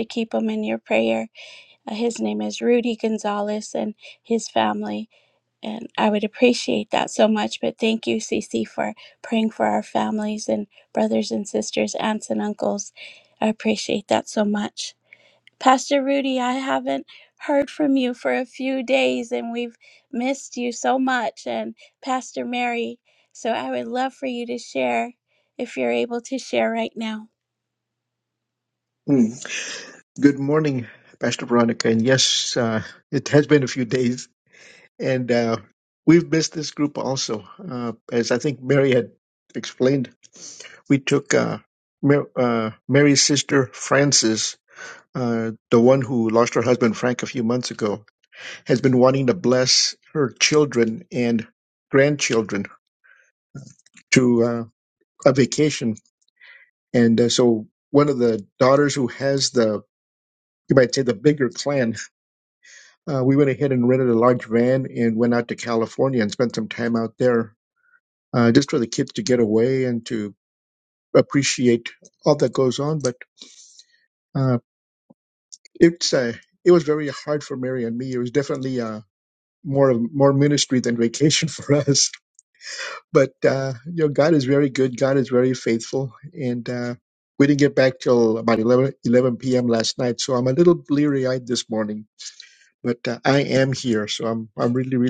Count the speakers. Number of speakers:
two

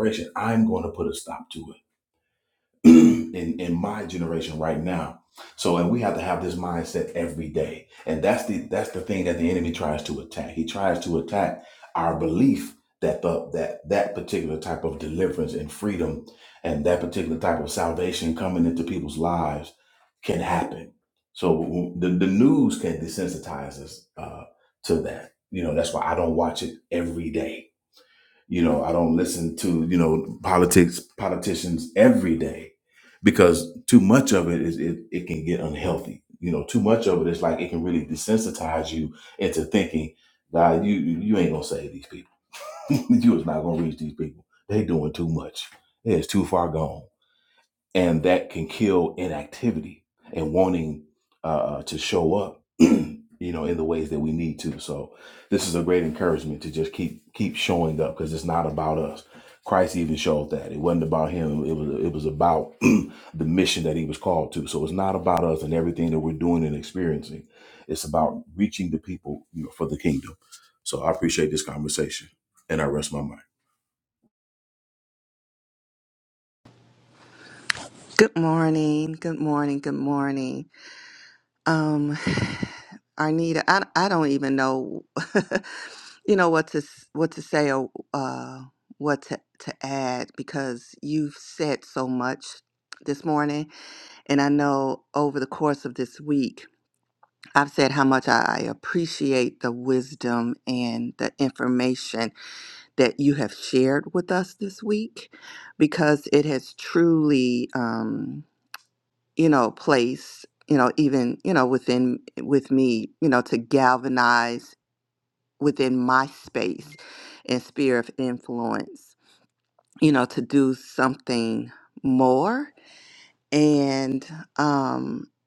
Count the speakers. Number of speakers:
two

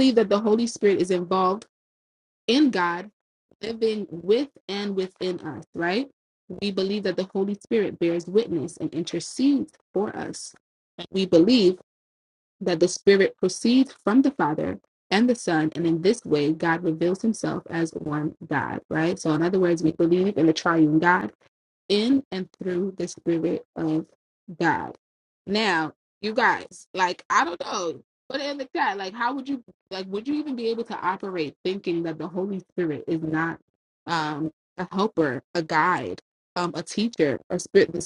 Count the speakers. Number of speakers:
one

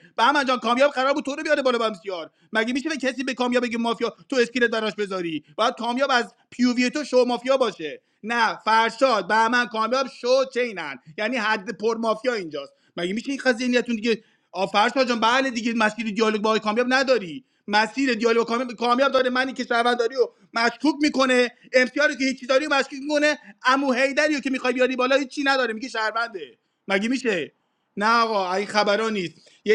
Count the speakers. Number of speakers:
one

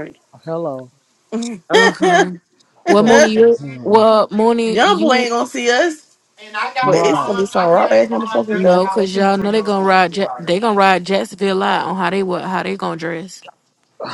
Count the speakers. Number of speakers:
four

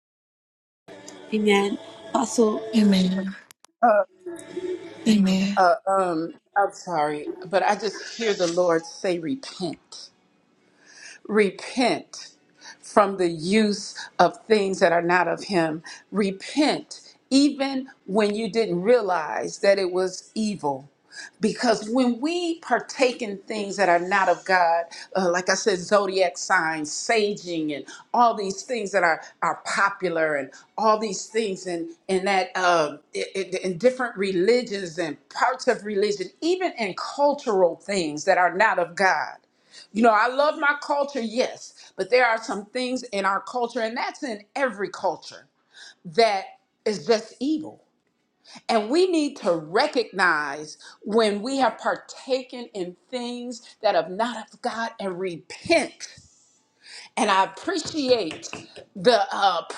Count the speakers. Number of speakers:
three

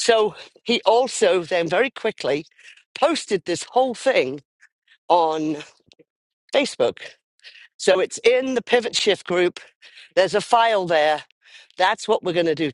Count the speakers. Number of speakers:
one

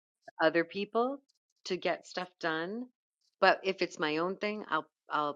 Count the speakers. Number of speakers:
one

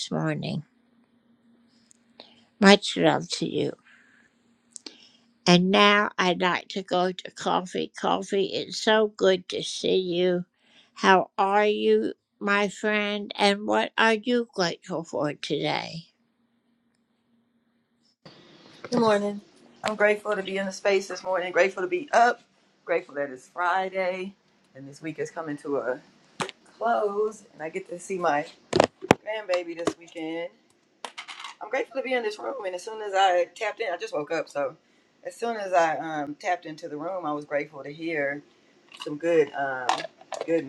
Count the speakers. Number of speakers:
two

